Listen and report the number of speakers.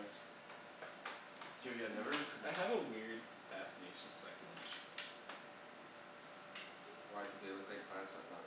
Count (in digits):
2